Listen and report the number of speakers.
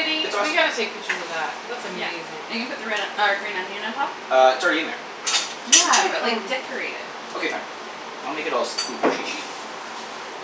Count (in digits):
3